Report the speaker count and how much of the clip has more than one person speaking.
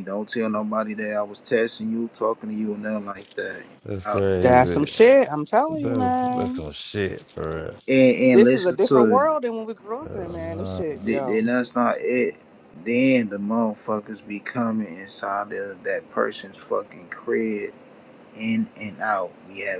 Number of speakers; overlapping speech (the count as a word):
three, about 19%